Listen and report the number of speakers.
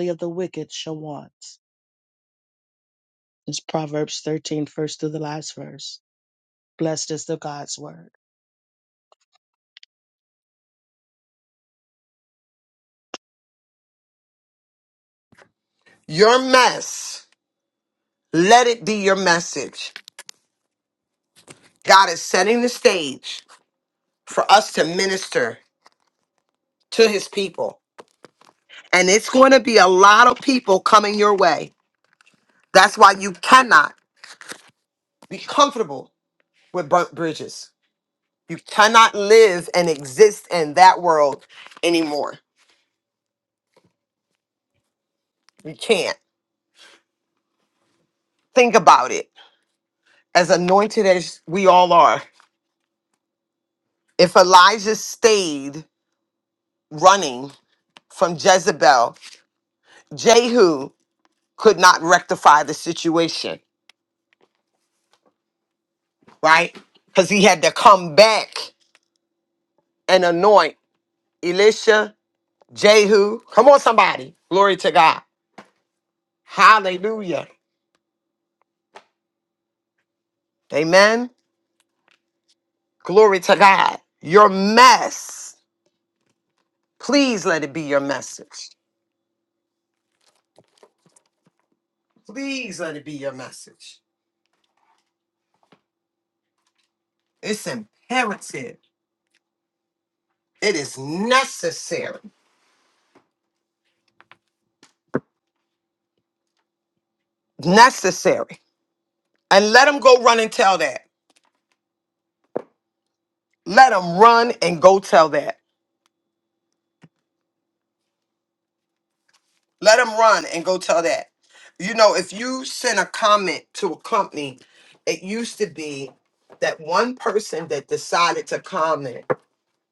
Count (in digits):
2